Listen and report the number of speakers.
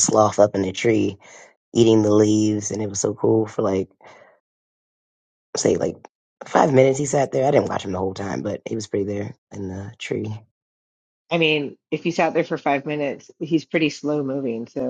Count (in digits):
2